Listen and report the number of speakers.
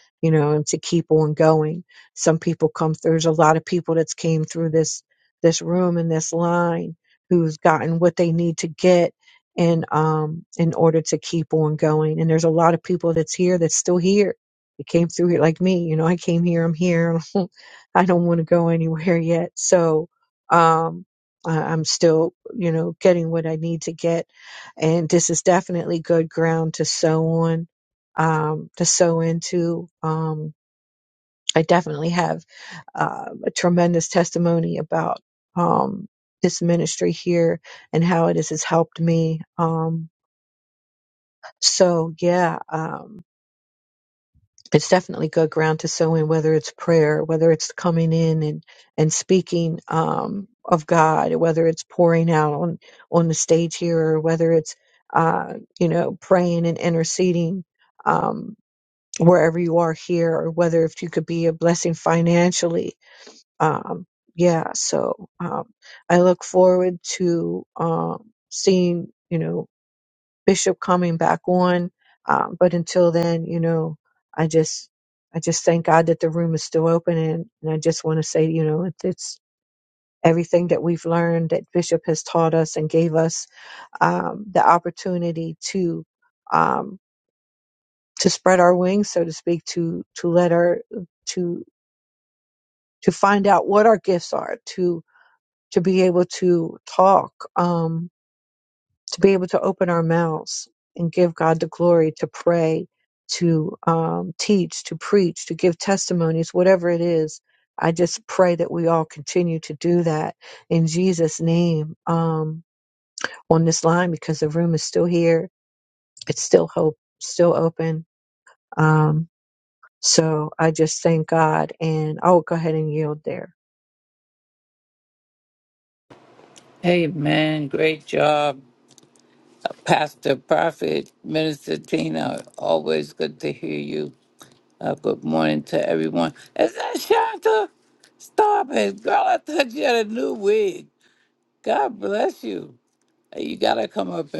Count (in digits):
2